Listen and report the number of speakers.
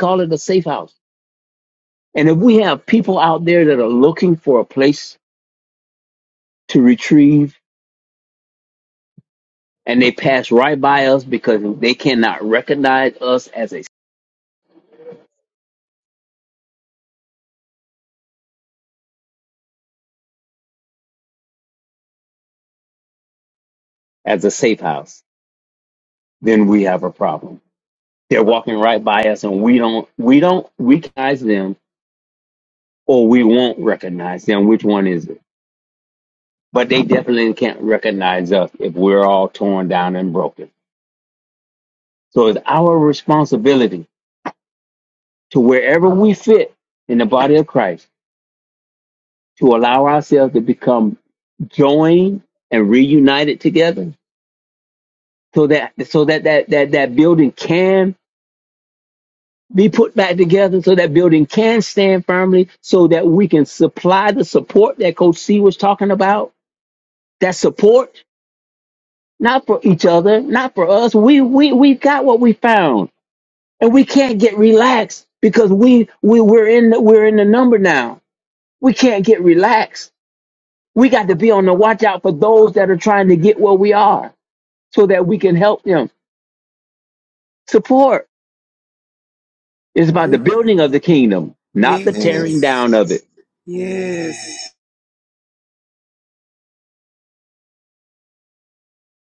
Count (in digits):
2